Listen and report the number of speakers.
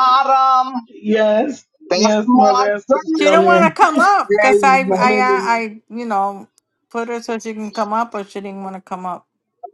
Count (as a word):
three